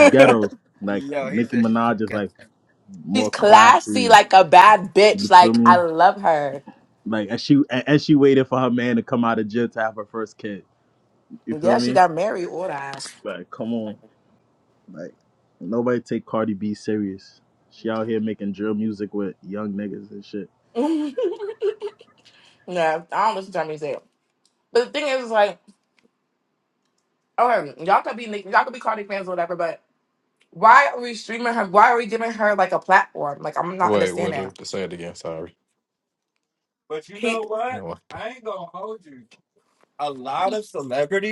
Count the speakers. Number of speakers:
4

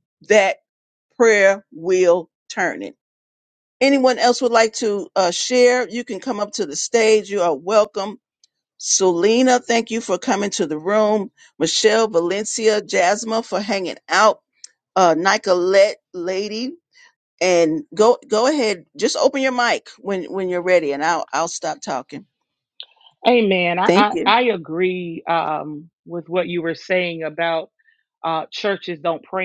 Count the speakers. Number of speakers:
2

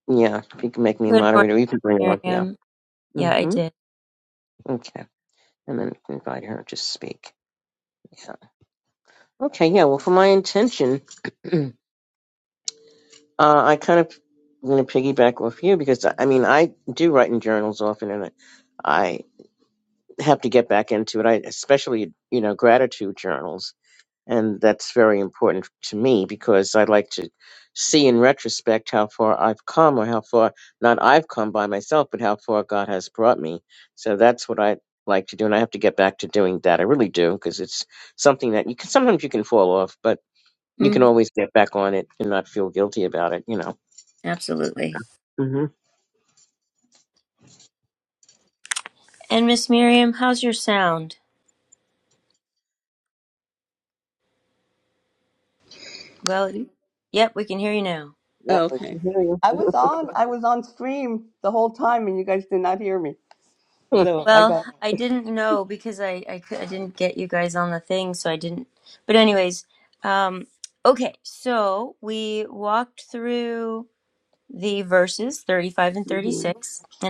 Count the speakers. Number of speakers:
3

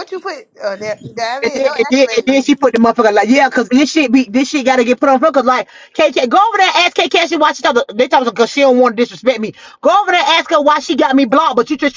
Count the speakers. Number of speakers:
2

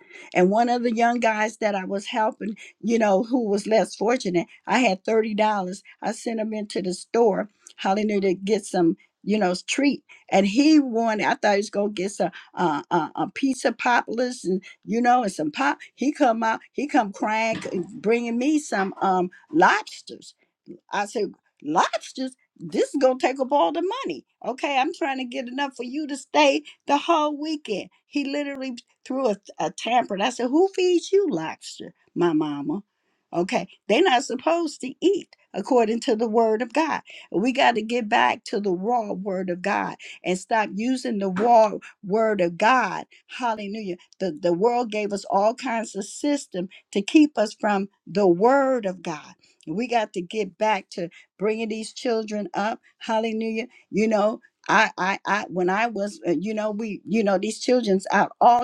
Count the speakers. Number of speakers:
1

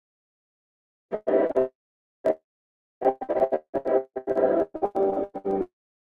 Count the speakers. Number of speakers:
0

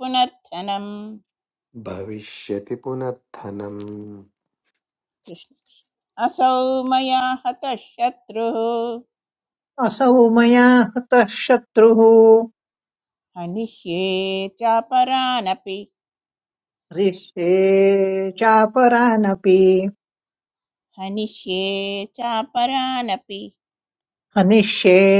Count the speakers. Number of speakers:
3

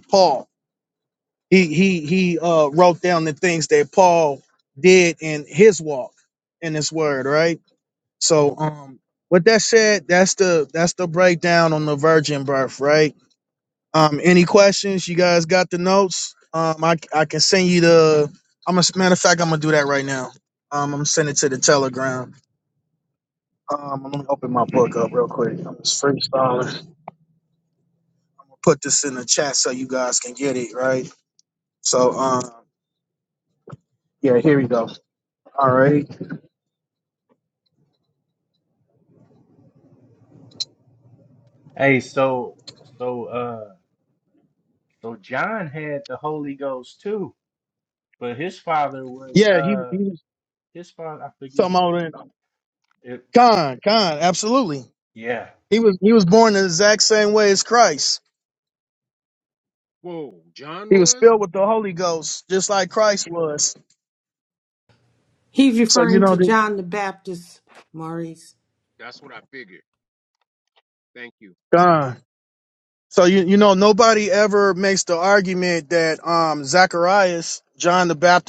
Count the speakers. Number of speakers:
4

